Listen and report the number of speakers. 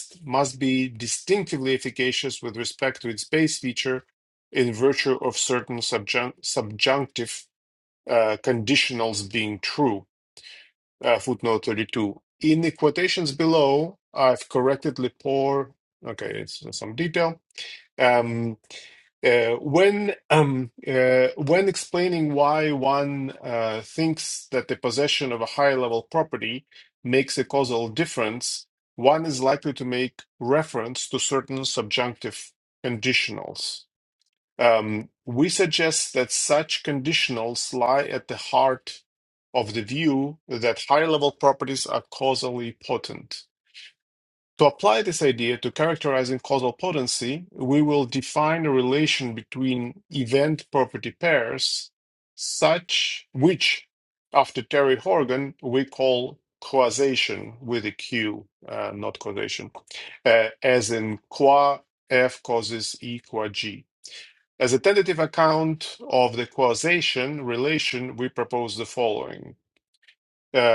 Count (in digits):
1